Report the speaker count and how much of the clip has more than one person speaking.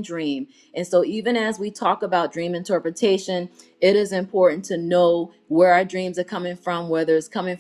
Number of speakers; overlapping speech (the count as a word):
one, no overlap